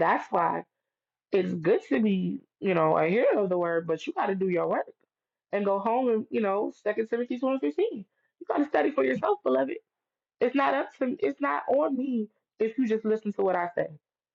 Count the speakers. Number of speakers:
one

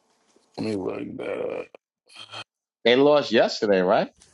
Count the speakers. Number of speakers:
two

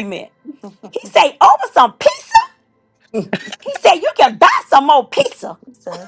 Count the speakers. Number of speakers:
one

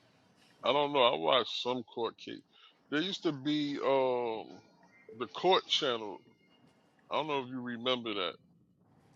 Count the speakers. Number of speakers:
one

